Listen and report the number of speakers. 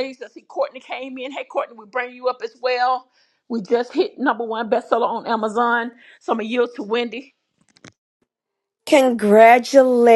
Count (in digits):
2